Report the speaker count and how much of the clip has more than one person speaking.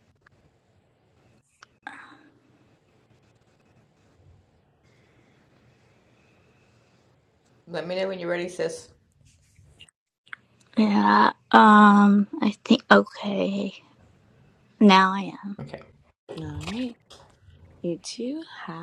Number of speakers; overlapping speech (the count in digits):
3, no overlap